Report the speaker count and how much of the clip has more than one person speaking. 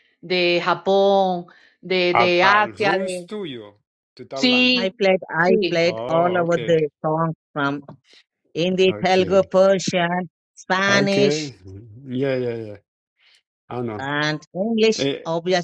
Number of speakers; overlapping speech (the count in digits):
3, about 27%